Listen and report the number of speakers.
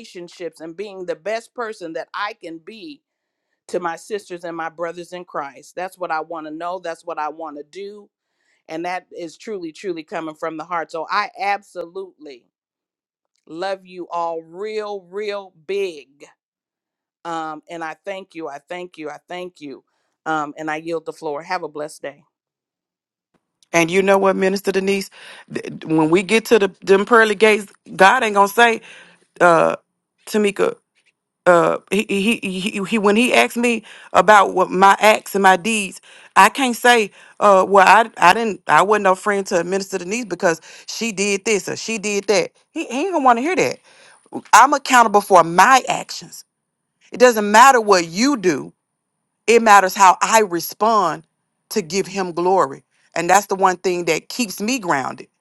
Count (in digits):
2